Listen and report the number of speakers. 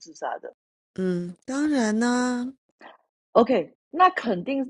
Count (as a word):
two